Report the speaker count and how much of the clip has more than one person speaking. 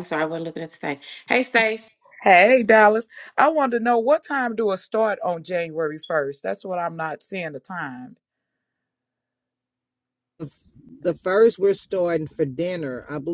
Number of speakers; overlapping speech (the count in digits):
3, no overlap